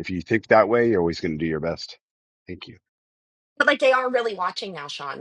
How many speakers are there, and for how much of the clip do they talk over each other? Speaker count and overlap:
two, no overlap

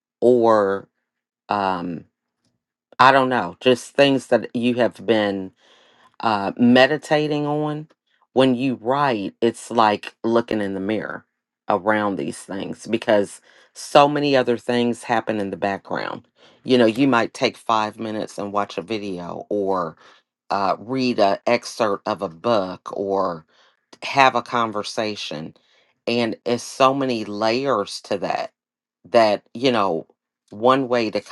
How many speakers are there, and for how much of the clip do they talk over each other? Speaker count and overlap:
one, no overlap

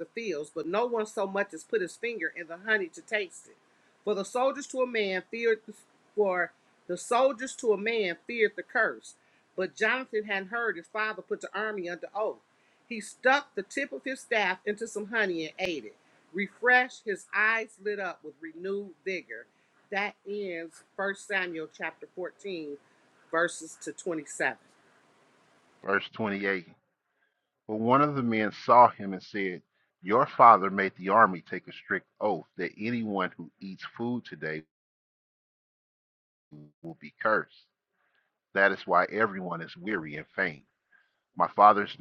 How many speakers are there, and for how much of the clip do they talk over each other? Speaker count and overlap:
two, no overlap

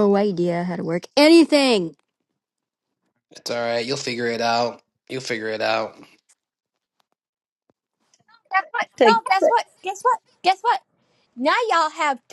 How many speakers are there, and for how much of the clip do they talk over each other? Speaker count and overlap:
three, no overlap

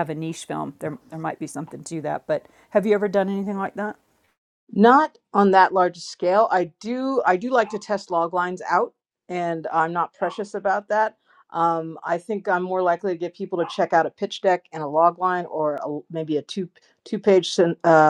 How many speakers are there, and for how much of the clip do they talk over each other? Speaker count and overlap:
two, no overlap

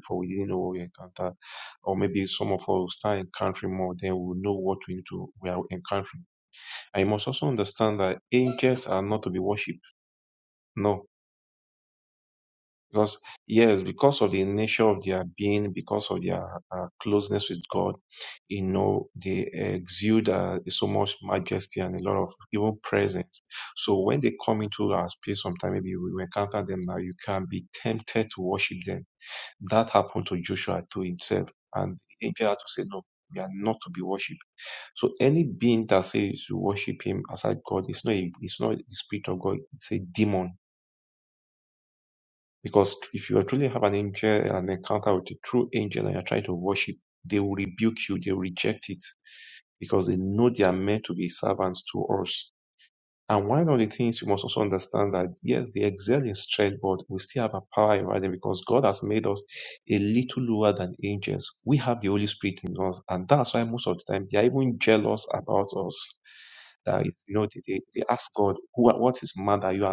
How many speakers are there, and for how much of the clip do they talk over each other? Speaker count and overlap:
one, no overlap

